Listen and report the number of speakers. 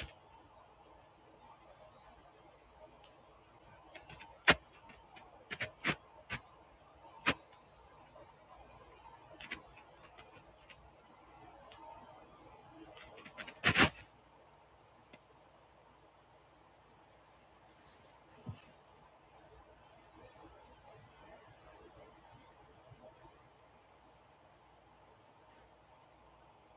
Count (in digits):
0